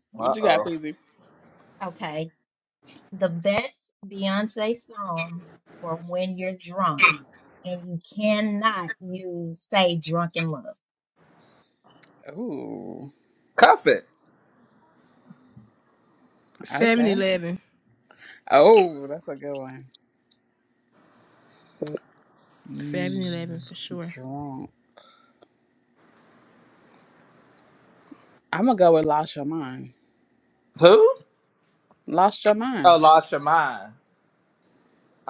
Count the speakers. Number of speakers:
4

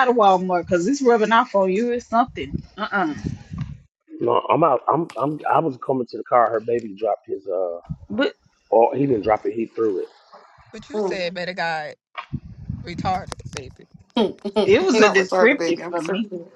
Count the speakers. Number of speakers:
4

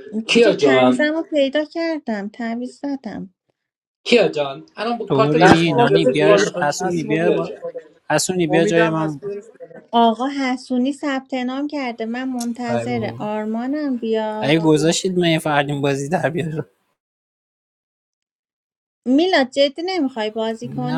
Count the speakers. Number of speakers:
4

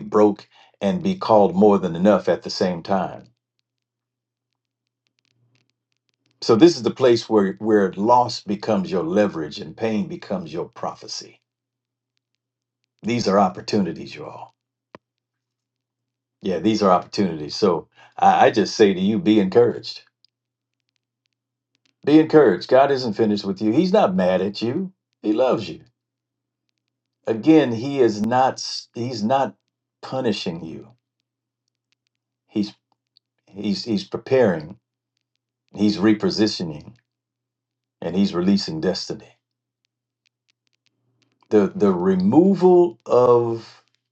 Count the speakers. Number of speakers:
1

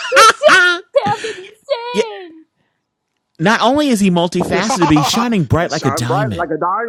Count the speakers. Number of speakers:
3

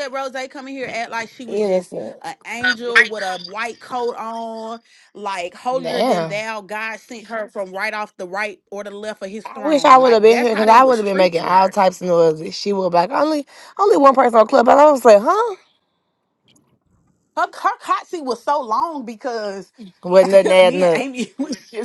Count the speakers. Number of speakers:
2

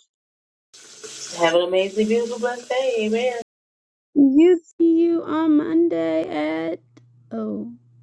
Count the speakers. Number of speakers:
2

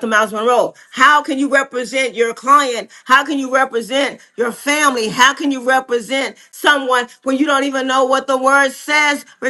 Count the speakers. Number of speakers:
1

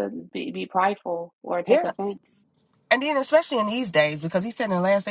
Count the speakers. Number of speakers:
2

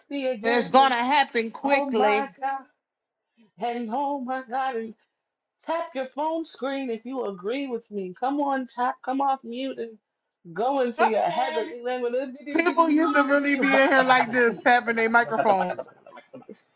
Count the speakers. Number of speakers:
2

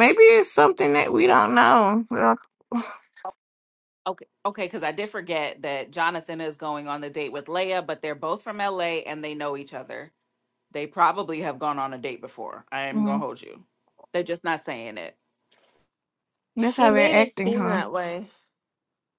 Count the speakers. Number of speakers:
3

